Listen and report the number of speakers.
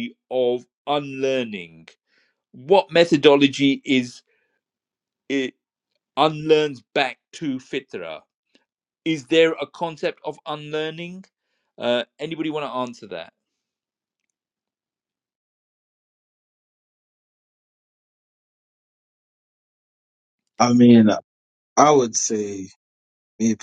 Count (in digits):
2